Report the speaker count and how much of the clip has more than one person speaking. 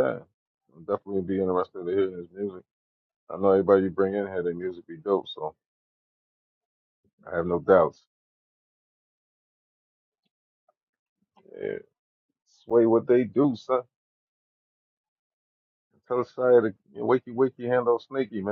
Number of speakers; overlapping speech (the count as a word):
one, no overlap